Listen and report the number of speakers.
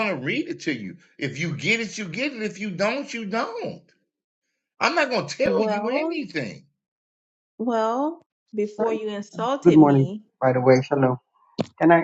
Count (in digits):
3